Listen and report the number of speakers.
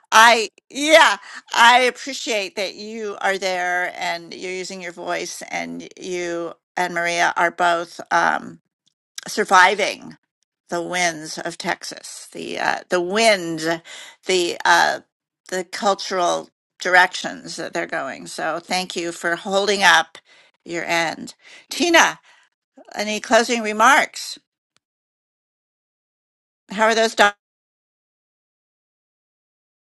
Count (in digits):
1